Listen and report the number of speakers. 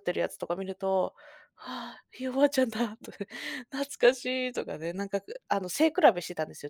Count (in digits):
1